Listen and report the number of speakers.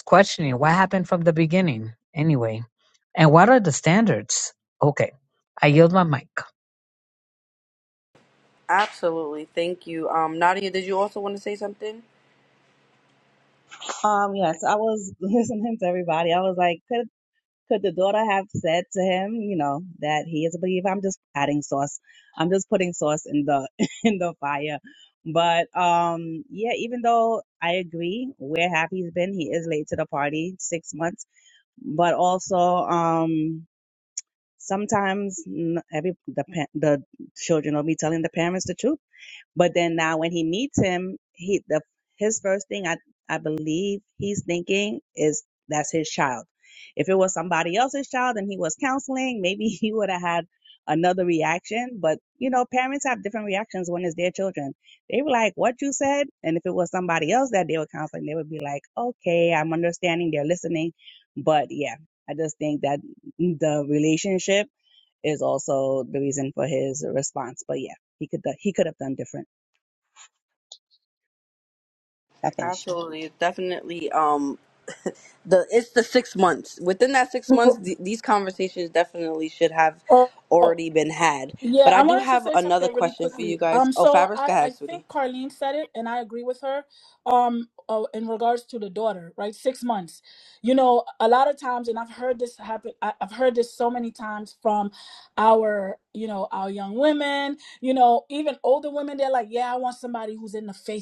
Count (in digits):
4